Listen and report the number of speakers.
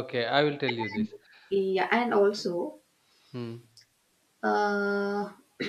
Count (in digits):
2